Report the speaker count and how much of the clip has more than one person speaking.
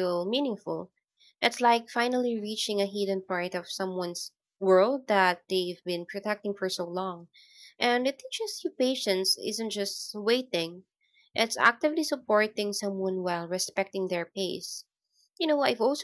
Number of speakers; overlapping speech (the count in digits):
1, no overlap